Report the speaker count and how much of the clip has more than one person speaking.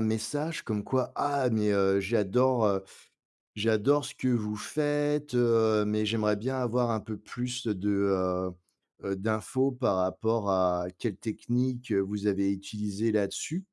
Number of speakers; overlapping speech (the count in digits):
1, no overlap